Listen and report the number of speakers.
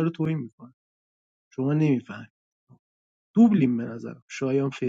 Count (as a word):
one